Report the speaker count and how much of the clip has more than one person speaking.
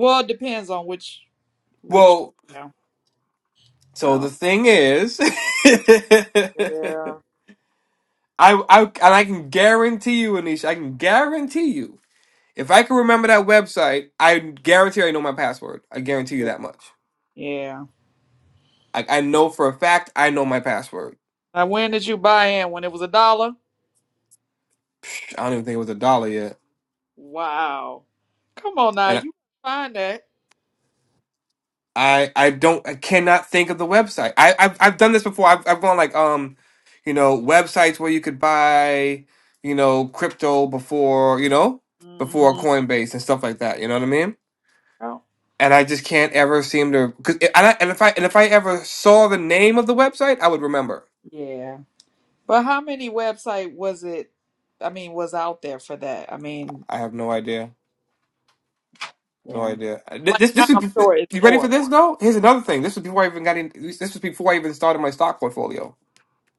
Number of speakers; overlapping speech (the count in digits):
2, about 4%